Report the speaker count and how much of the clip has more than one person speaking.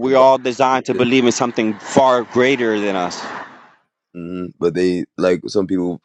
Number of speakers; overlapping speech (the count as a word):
two, about 9%